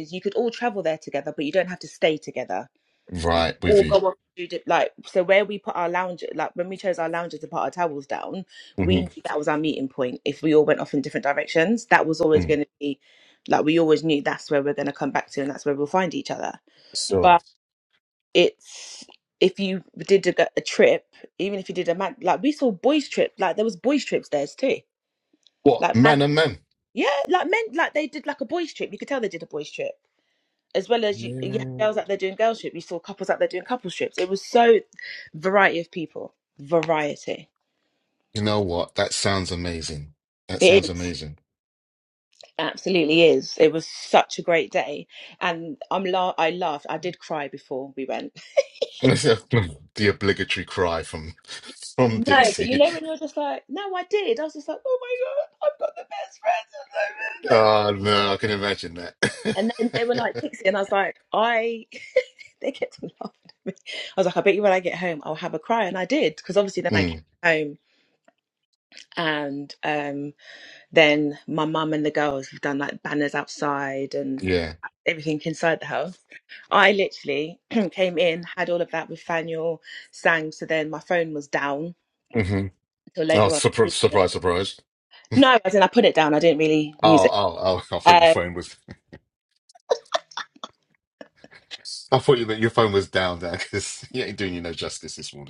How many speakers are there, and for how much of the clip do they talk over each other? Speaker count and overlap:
2, about 5%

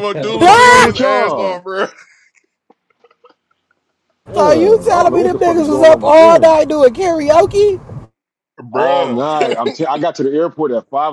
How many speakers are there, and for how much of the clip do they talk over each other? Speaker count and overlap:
3, about 38%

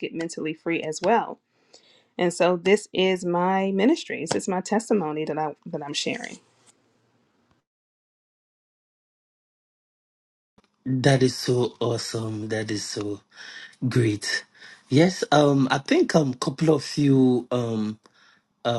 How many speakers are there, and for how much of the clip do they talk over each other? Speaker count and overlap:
2, no overlap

